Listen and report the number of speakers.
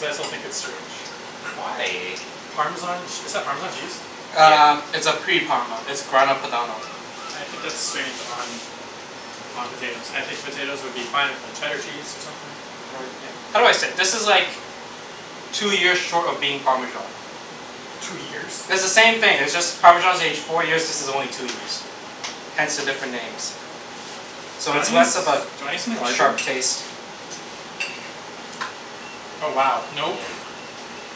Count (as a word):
three